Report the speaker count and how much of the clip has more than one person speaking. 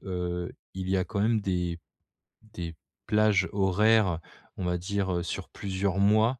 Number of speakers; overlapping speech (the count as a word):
one, no overlap